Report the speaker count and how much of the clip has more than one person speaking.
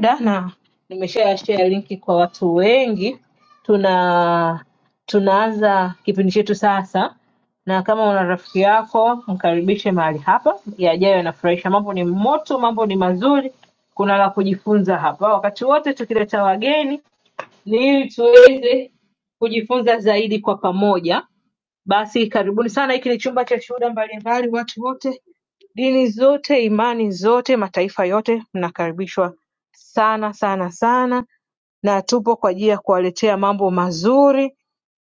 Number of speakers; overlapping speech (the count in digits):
1, no overlap